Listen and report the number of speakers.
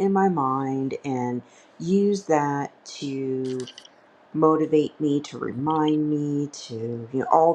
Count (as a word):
one